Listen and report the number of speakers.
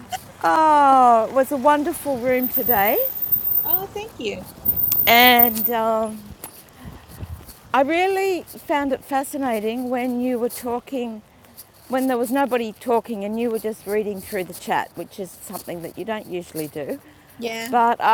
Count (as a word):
two